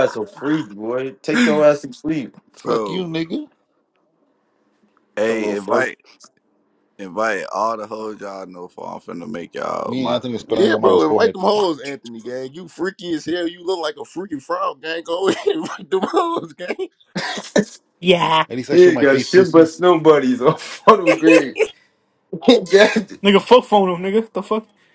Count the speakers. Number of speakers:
5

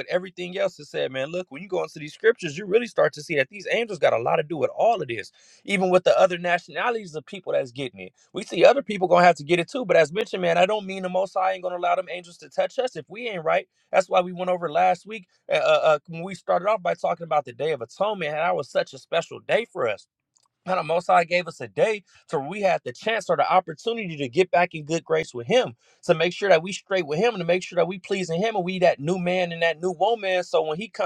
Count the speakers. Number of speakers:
1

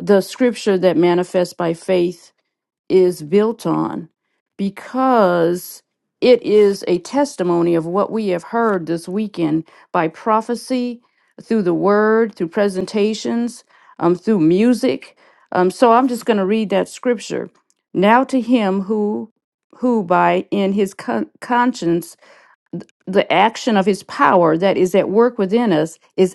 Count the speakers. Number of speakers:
1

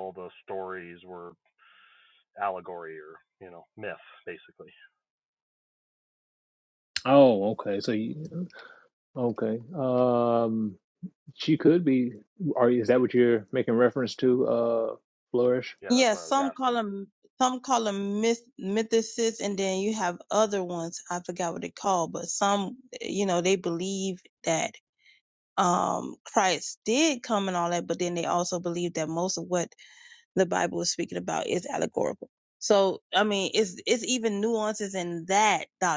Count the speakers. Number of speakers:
3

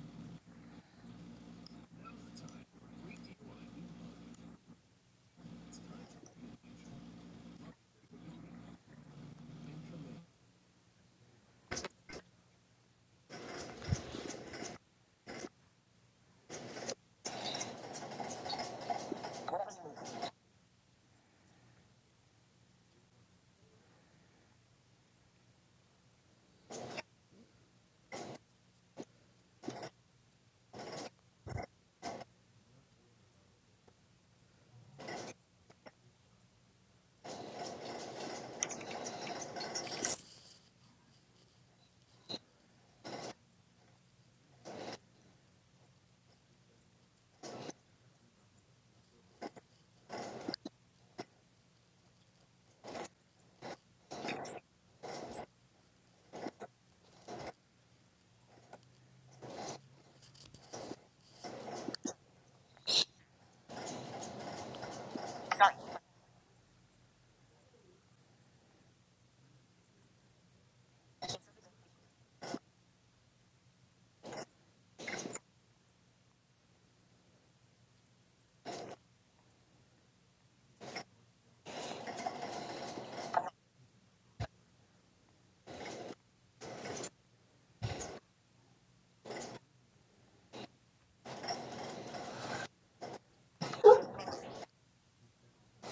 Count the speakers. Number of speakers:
0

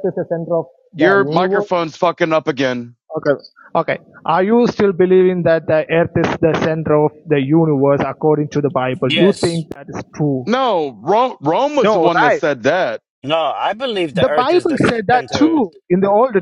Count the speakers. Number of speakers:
3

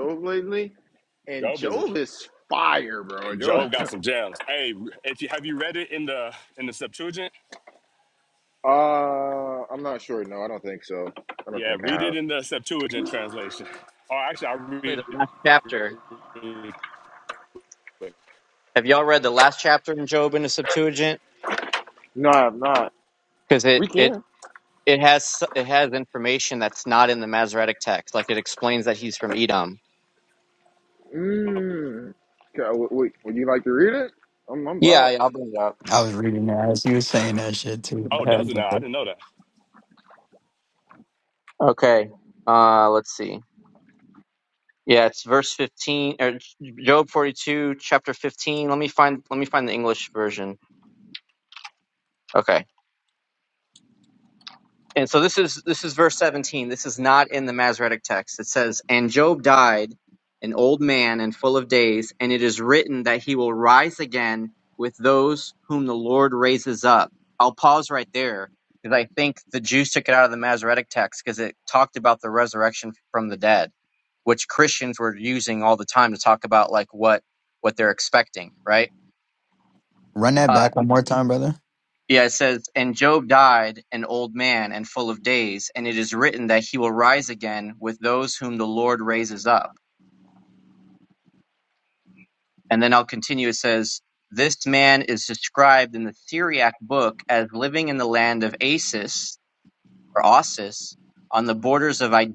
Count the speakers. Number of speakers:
4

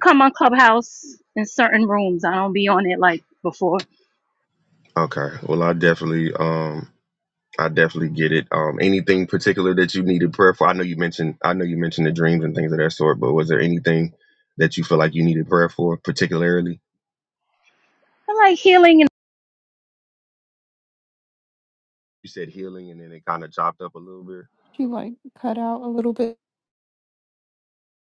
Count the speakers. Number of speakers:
3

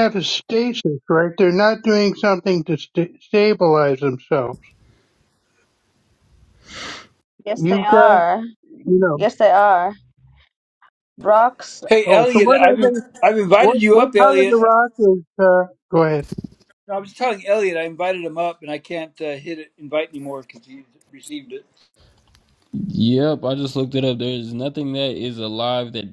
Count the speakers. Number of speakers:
4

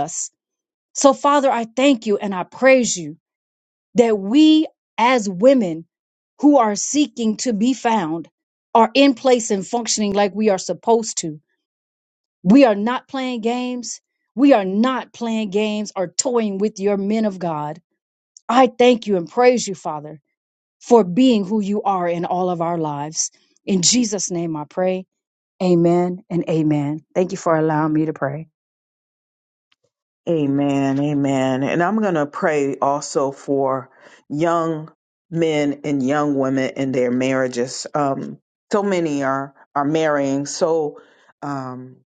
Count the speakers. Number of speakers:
2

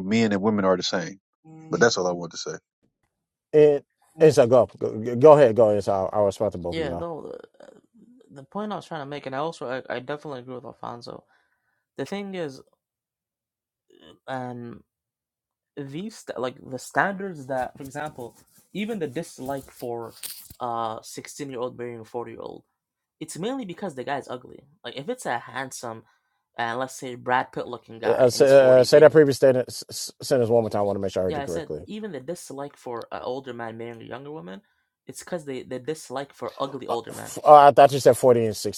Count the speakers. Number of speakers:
3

